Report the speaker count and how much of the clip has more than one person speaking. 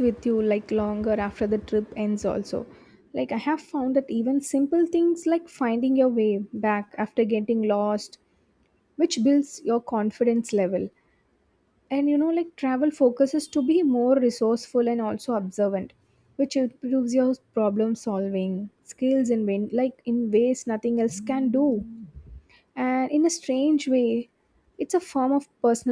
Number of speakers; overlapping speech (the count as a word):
one, no overlap